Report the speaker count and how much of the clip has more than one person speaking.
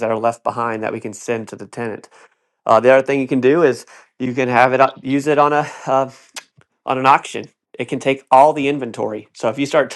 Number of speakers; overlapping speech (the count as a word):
one, no overlap